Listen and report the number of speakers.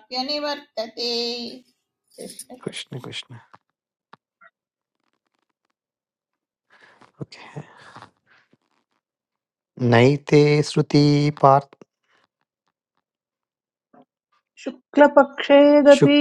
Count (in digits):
3